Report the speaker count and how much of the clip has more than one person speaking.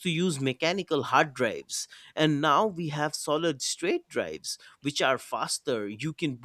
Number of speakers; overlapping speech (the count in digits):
1, no overlap